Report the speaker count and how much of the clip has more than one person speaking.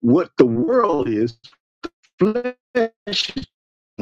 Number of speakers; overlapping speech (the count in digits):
1, no overlap